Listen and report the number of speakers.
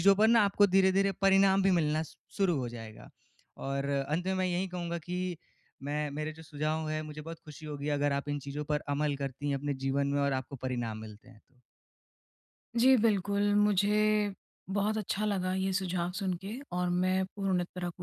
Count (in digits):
2